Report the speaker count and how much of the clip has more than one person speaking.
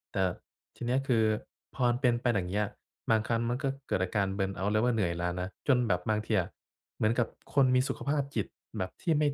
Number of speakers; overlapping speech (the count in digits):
1, no overlap